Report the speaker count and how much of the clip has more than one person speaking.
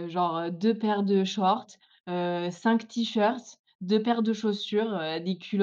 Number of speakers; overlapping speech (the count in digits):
1, no overlap